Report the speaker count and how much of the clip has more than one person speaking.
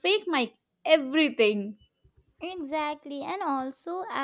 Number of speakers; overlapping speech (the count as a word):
two, no overlap